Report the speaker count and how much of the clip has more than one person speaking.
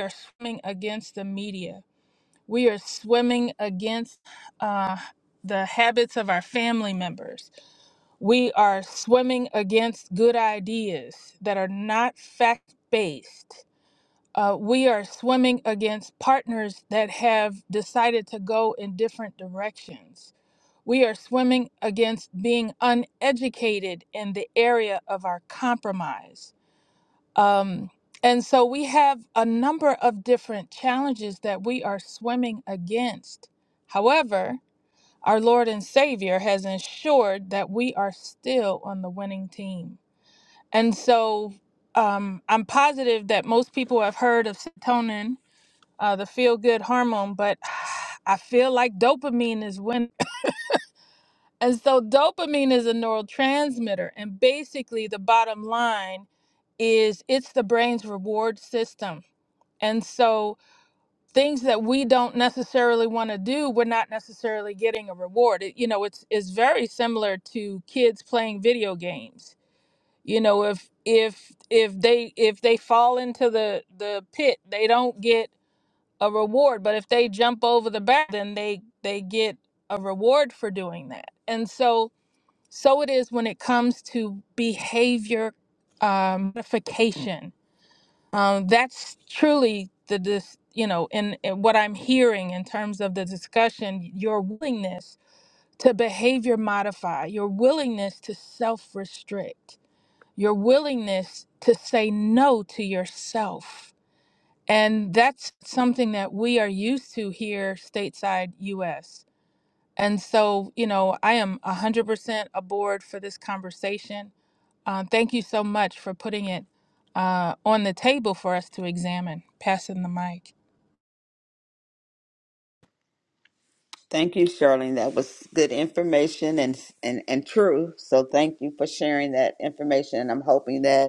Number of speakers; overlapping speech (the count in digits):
2, no overlap